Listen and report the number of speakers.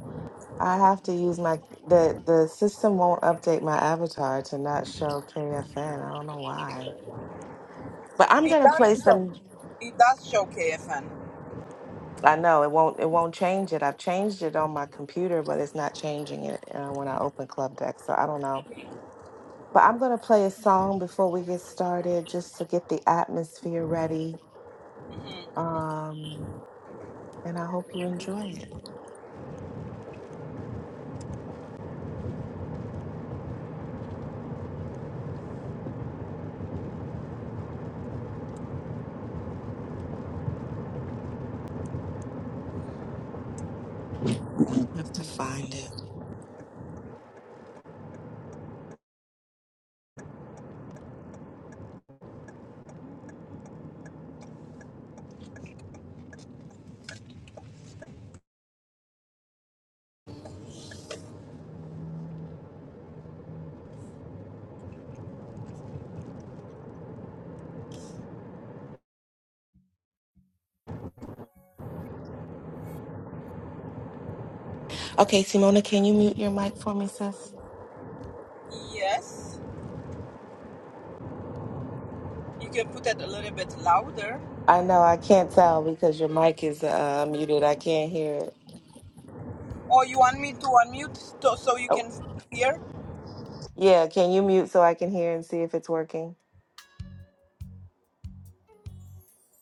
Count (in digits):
2